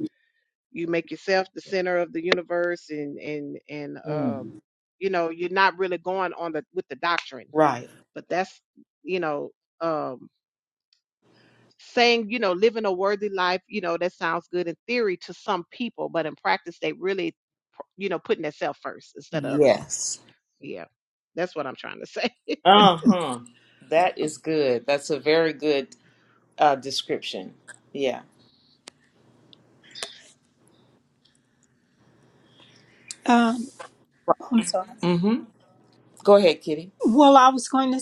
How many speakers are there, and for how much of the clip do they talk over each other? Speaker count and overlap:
three, about 2%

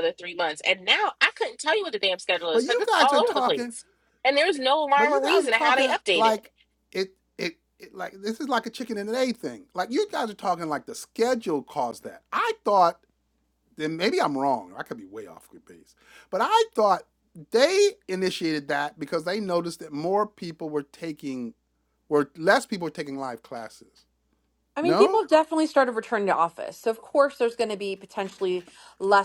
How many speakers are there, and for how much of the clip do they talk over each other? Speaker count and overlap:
three, about 10%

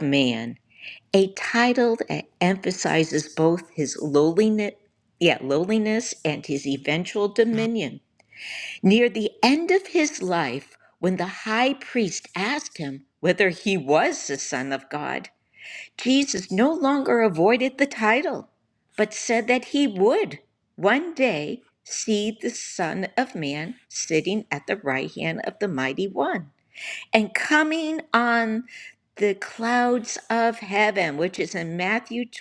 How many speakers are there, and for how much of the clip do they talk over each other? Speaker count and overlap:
one, no overlap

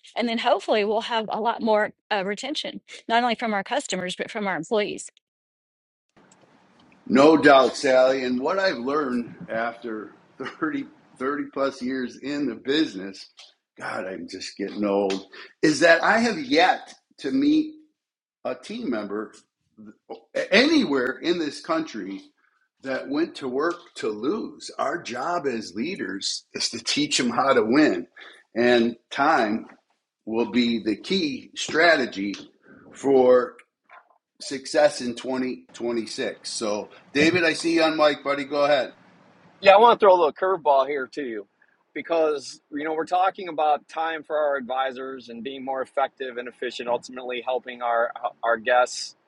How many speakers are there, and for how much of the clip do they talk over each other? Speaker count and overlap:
three, no overlap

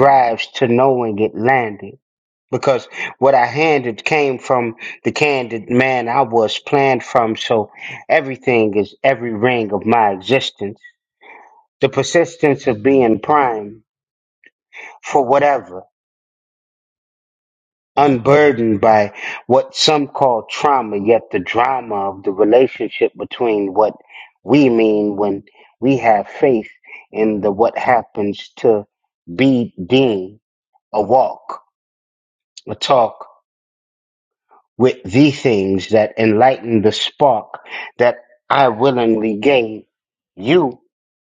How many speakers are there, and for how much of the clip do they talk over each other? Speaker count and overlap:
one, no overlap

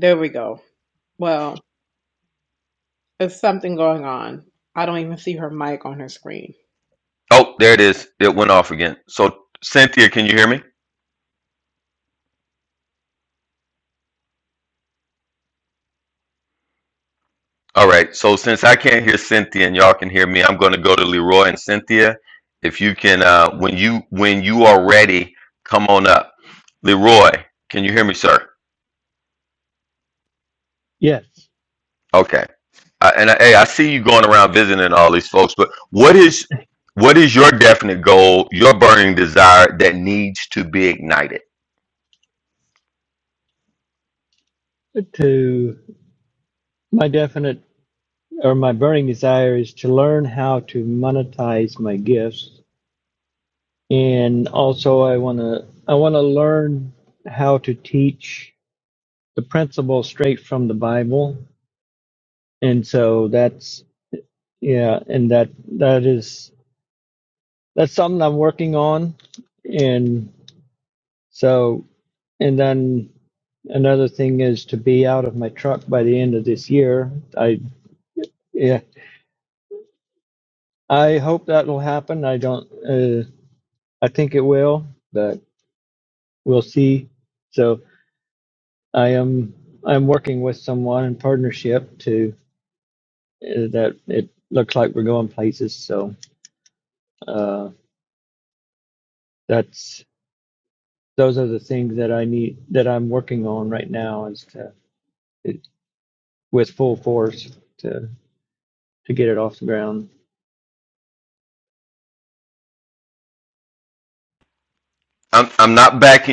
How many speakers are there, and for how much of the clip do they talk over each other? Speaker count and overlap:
three, no overlap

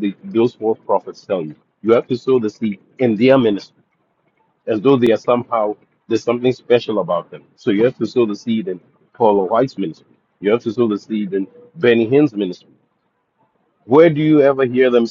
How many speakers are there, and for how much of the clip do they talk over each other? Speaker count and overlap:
one, no overlap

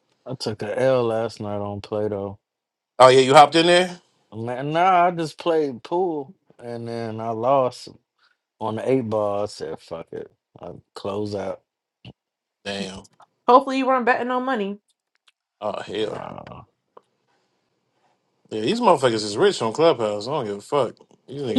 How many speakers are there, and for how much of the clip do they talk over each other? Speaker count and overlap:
three, about 1%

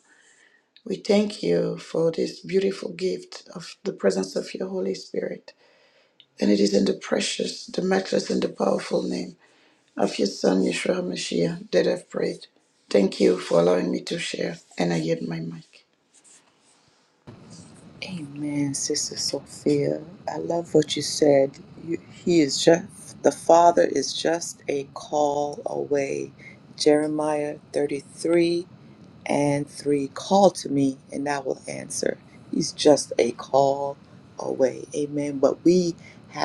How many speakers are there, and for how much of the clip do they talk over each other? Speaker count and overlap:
two, no overlap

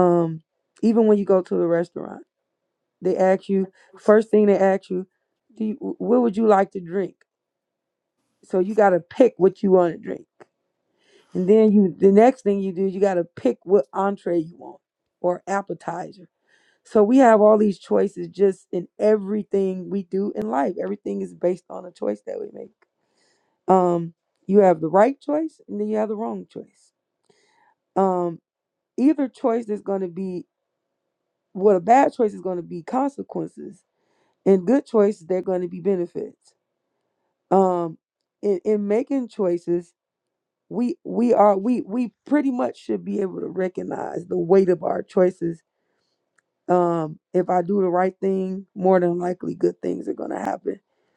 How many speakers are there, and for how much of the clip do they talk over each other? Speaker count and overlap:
one, no overlap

